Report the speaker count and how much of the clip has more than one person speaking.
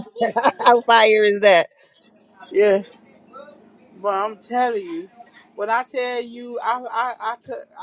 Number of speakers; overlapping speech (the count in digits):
2, no overlap